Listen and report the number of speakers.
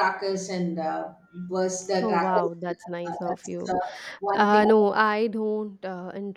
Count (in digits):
2